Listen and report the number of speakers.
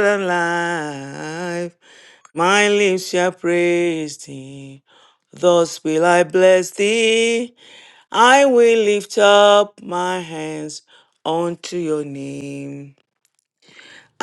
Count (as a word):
one